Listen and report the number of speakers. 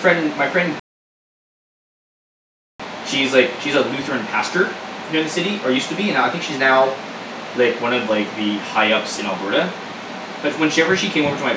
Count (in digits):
1